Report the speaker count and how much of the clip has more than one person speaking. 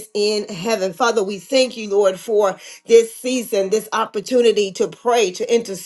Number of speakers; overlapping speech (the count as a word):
one, no overlap